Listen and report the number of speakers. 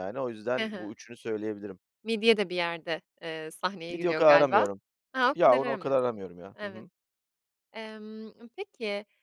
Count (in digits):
2